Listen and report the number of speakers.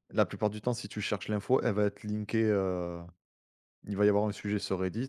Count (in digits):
1